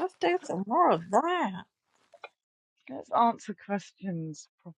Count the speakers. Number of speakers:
2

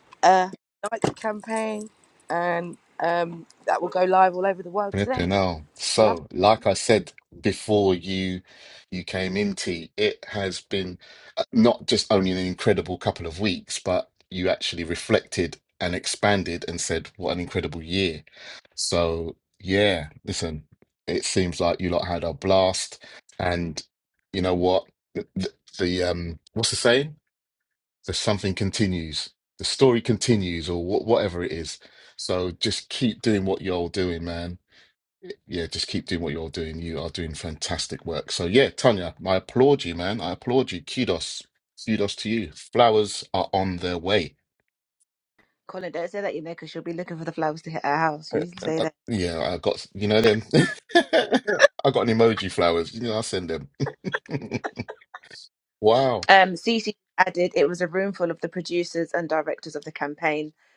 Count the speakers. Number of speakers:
3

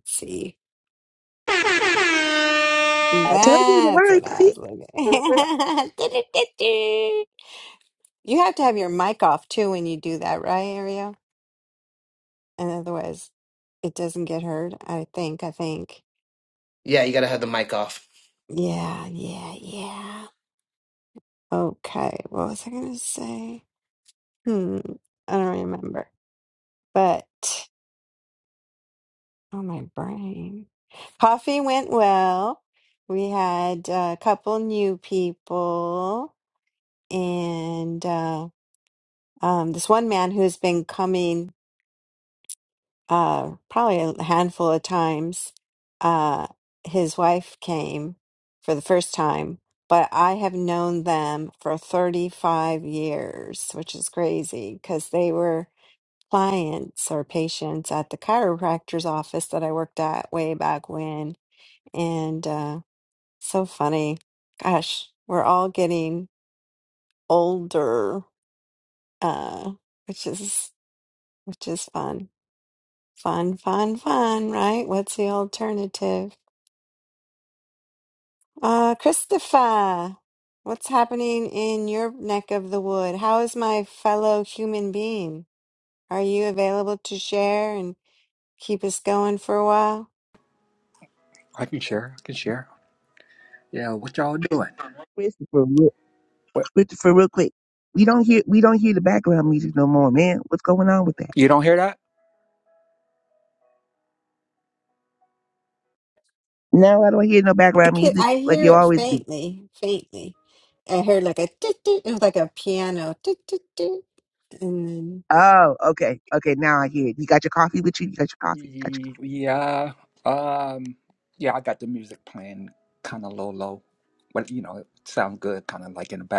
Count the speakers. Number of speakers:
4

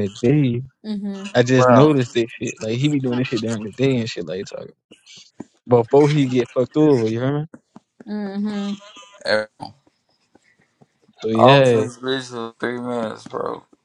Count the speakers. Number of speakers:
3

